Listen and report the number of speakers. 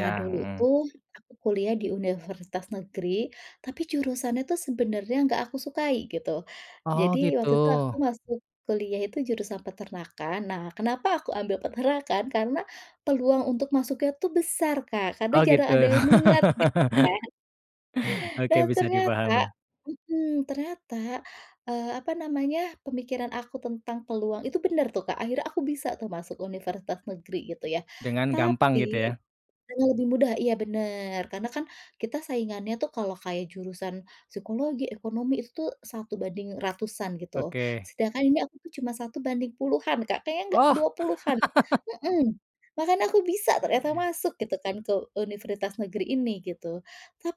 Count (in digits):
2